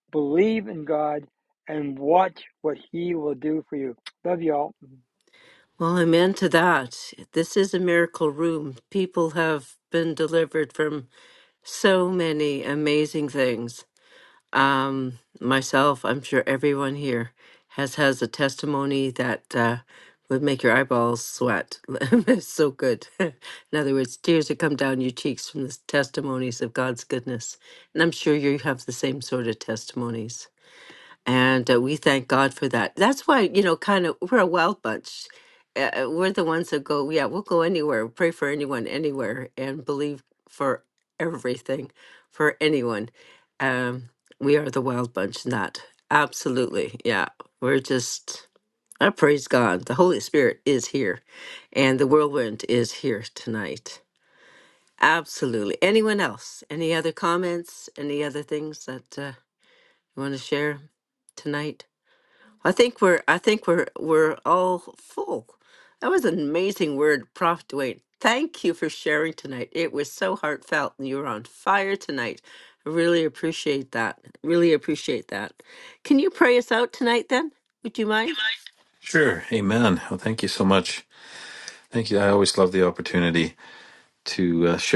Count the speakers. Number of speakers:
three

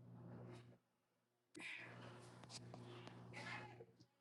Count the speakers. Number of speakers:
zero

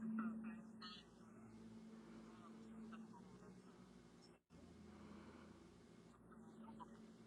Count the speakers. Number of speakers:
zero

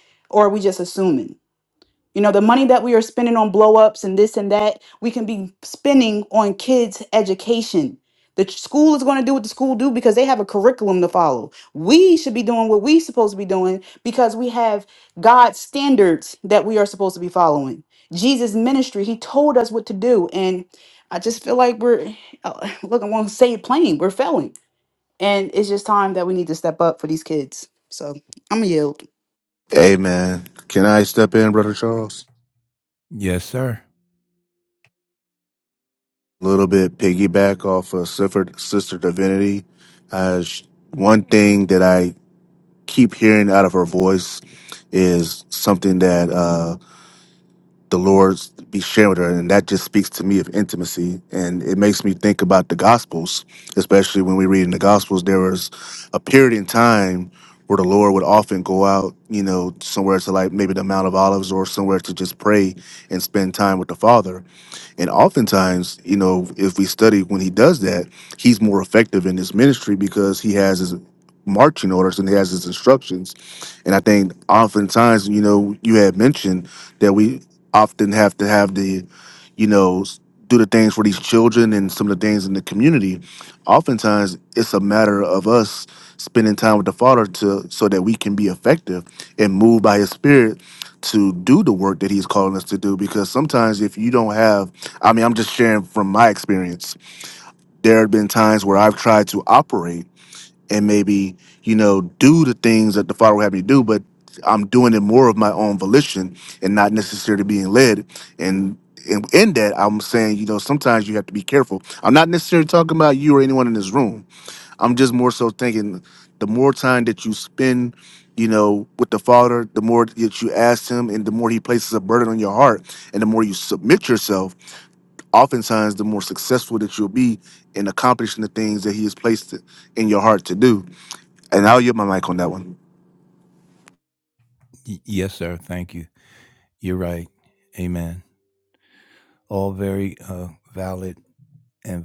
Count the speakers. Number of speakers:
three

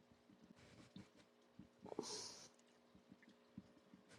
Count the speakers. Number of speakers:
zero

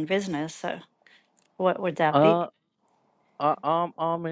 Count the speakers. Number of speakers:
two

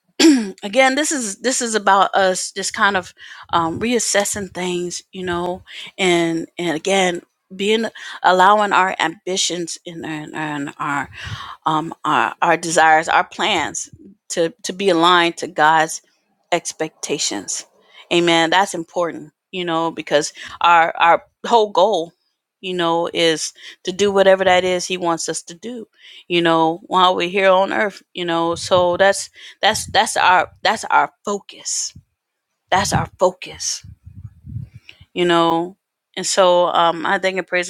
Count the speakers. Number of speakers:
one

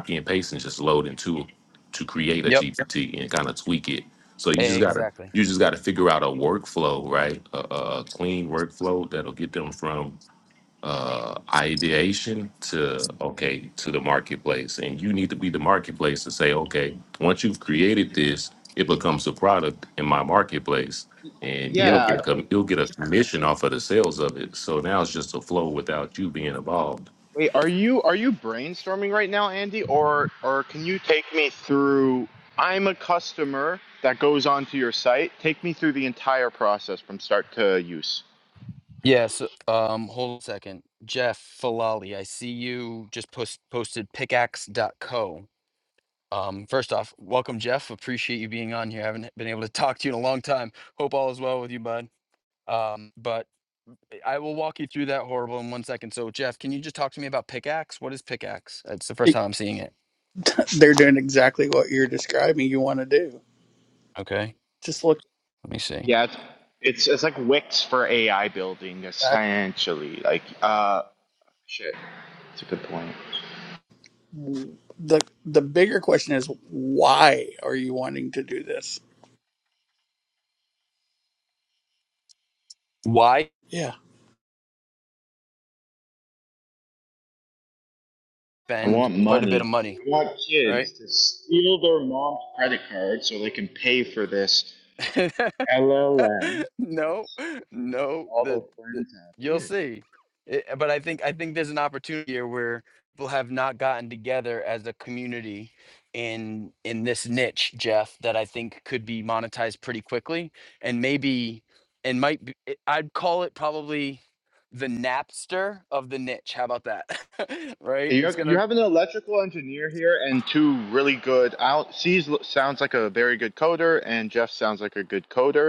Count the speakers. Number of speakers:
four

